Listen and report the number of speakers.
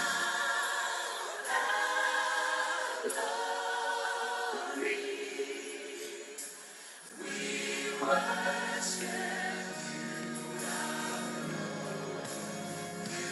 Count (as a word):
zero